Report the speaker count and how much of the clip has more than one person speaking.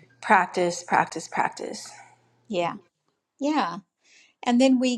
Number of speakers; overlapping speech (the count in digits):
2, no overlap